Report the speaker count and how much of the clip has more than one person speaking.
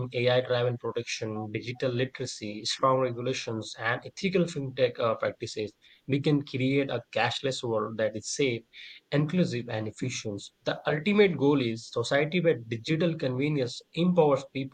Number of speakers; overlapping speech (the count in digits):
1, no overlap